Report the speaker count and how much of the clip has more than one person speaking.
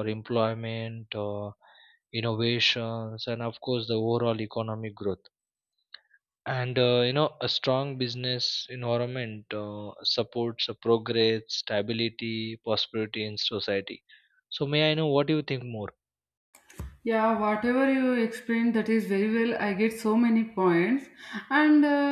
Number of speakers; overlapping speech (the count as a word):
two, no overlap